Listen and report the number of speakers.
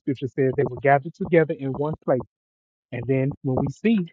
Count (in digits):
1